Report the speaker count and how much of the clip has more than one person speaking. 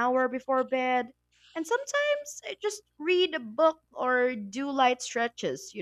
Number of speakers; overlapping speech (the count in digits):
1, no overlap